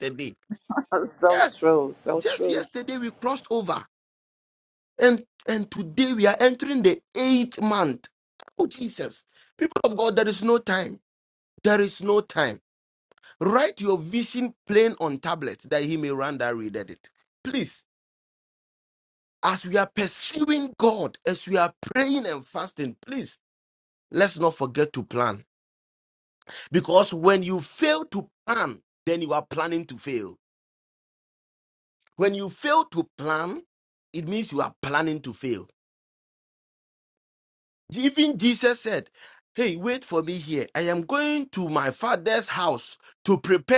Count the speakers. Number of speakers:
2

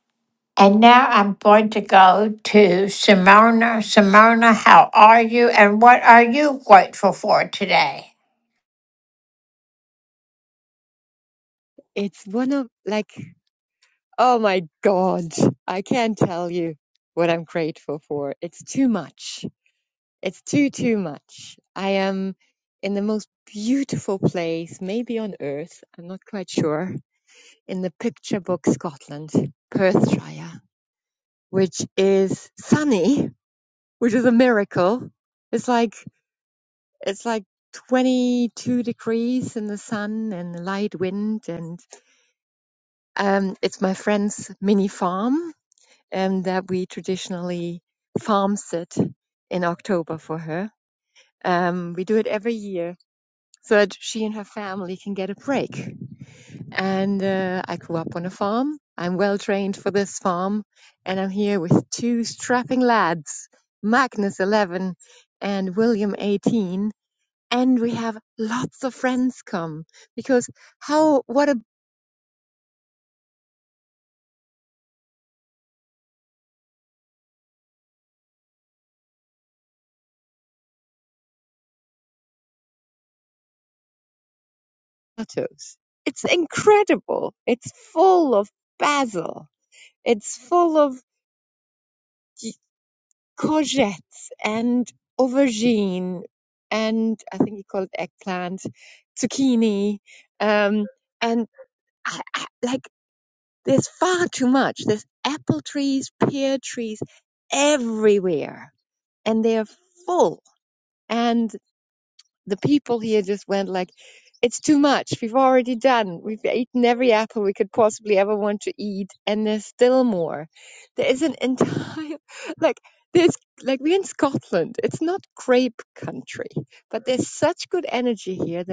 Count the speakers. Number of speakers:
2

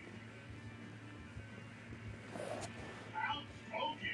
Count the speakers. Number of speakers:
0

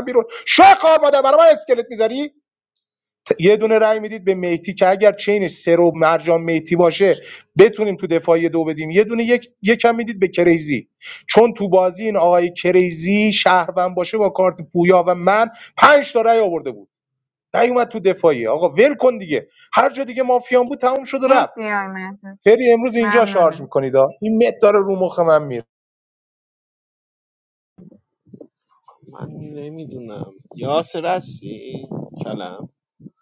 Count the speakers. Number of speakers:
3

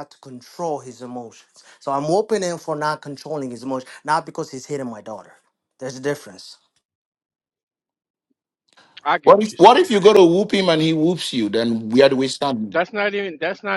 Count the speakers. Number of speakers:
3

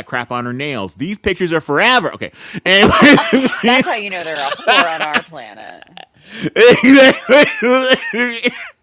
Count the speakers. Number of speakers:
2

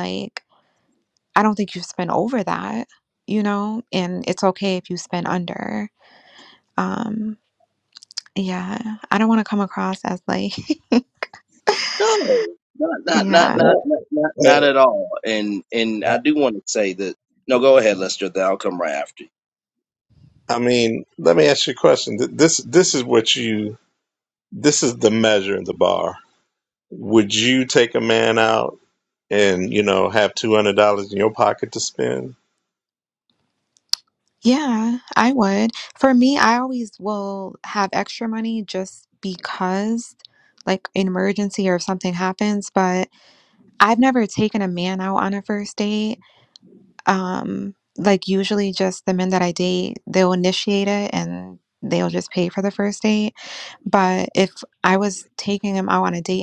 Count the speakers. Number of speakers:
3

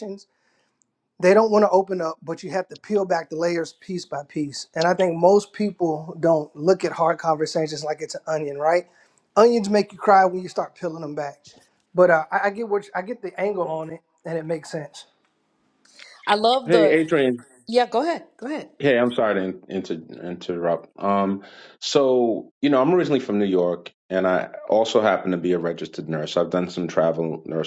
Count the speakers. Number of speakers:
3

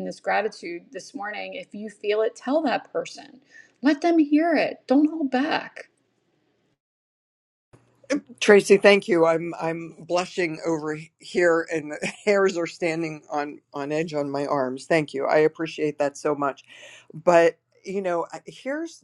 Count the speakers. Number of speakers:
2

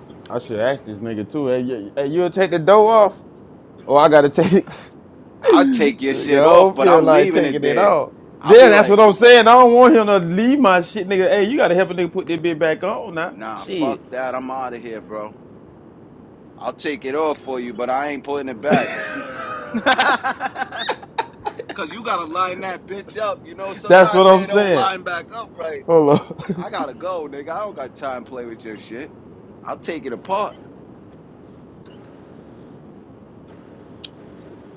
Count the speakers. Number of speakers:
2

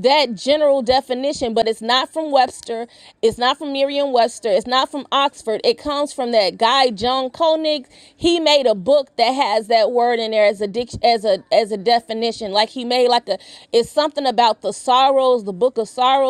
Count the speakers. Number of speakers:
1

